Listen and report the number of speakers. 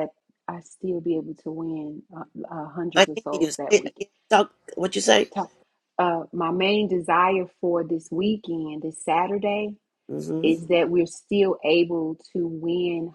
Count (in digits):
2